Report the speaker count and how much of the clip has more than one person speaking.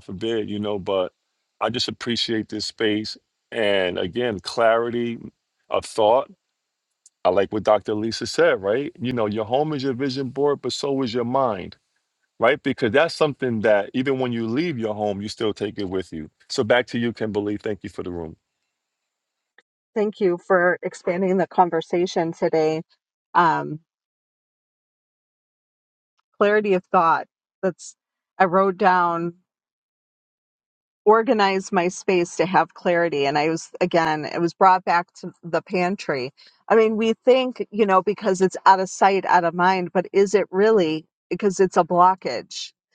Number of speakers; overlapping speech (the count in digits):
2, no overlap